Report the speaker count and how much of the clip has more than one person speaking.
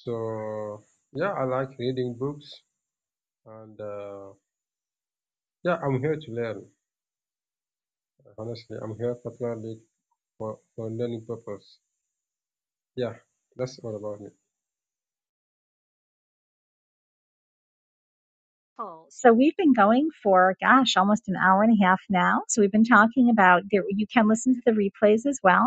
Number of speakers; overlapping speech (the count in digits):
2, no overlap